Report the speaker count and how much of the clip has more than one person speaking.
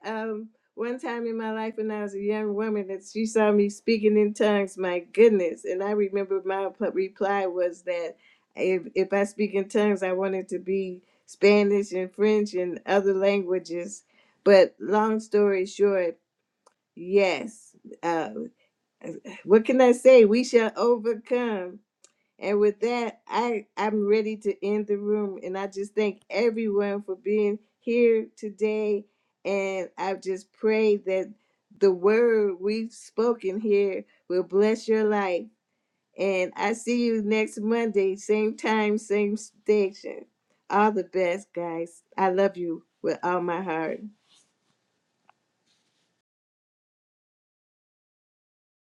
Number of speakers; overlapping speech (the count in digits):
1, no overlap